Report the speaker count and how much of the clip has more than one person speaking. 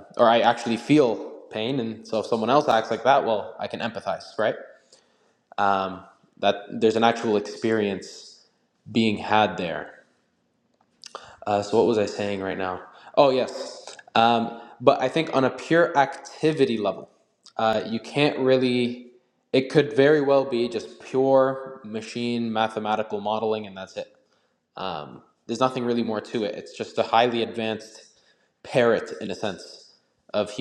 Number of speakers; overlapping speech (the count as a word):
one, no overlap